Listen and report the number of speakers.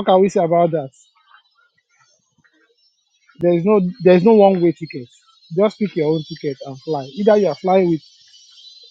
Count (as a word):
one